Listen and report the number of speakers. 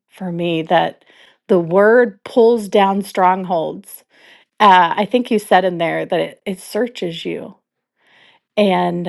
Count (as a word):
one